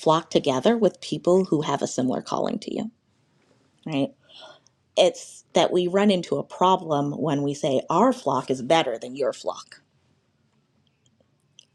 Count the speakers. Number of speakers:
1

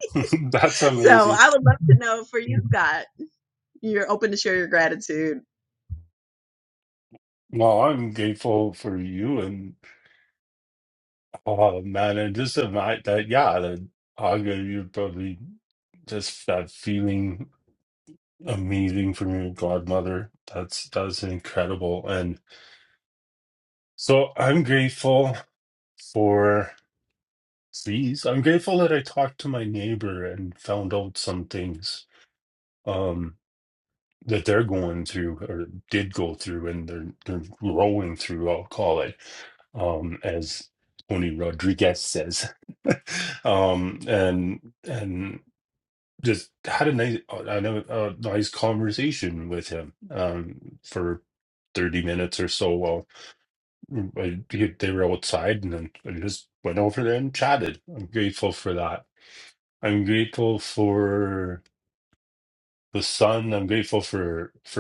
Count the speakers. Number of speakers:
2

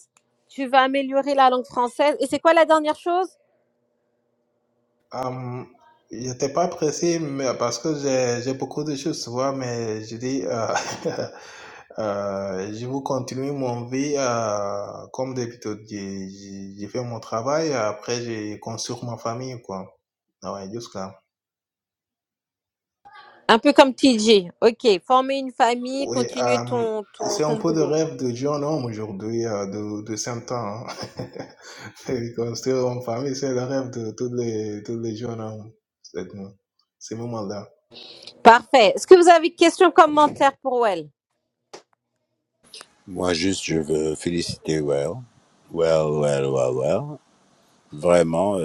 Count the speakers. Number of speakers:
3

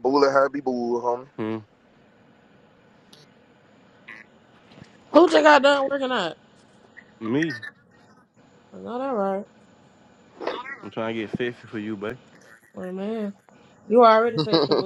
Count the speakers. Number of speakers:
3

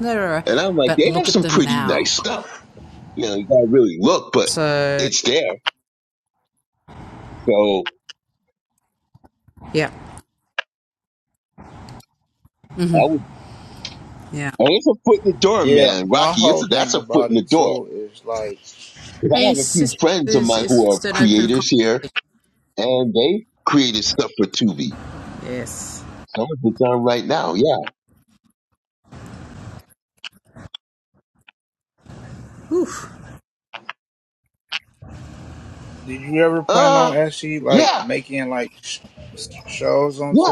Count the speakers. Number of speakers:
3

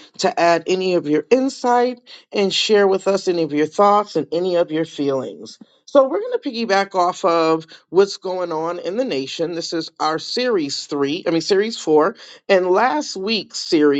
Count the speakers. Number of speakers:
1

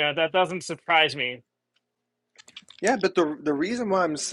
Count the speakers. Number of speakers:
2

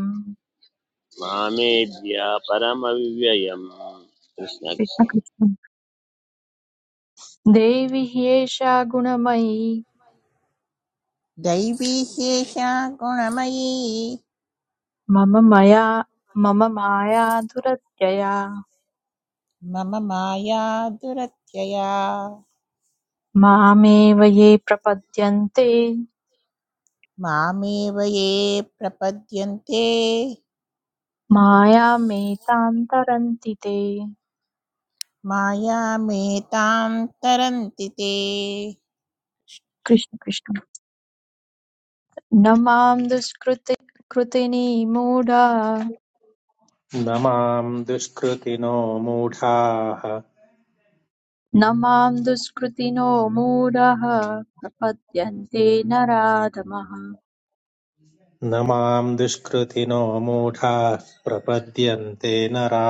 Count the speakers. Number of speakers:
4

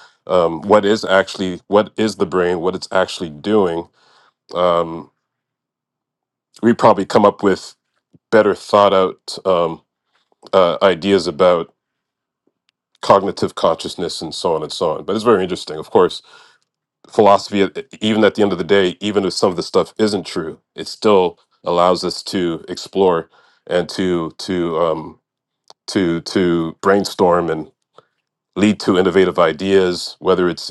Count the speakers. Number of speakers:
1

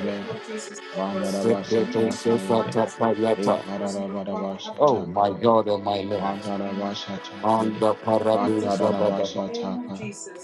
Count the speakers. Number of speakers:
3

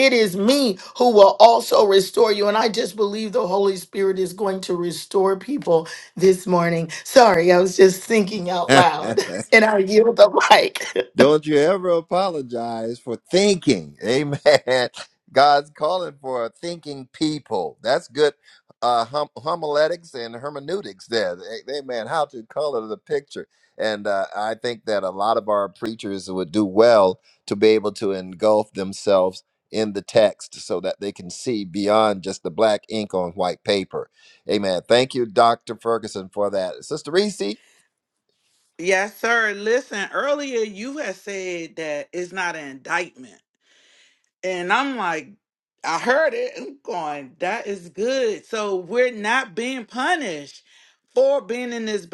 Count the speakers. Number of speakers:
3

